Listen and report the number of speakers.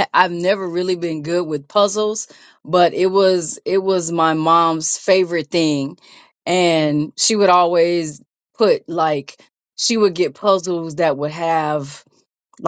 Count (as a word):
one